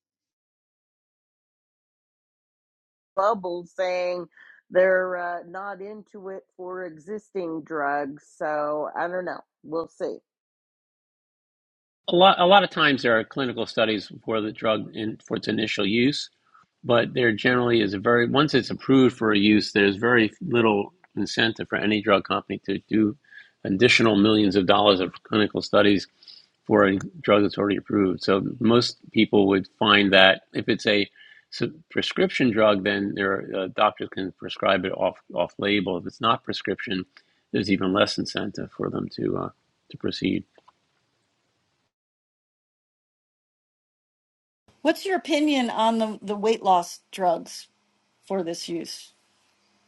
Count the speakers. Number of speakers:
three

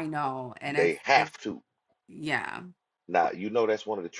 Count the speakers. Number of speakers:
two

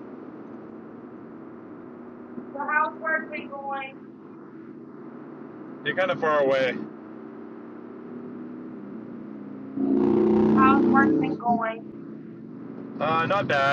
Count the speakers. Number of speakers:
two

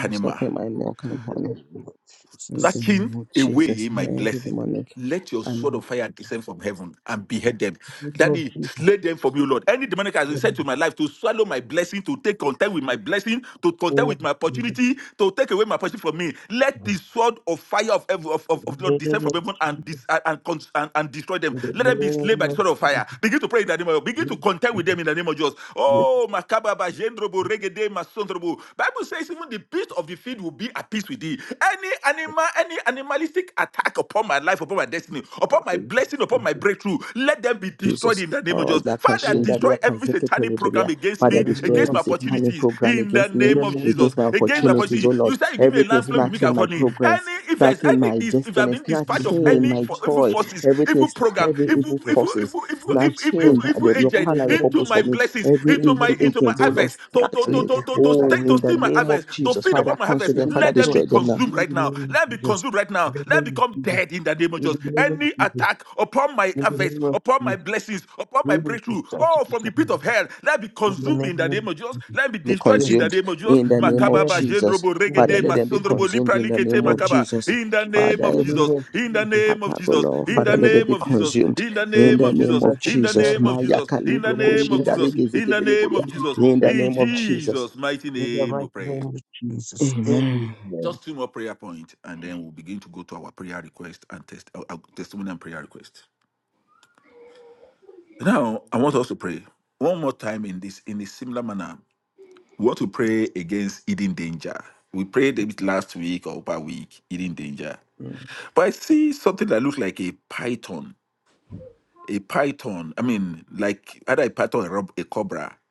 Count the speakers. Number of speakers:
three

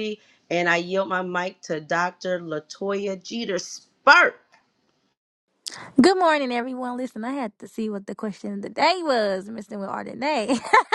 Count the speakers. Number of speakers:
two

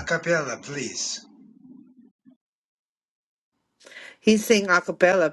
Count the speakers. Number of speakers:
two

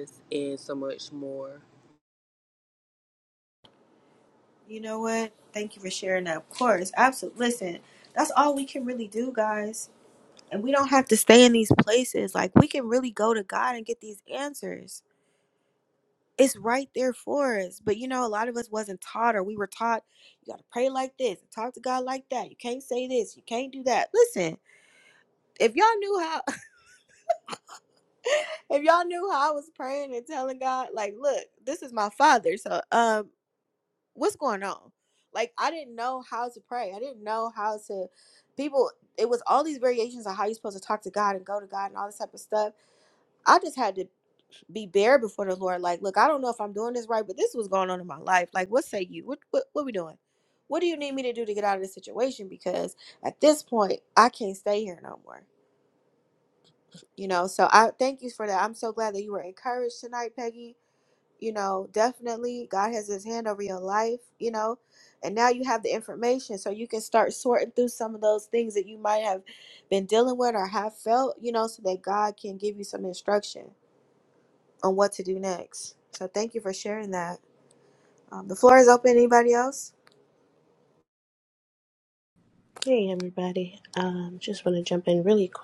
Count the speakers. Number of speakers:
three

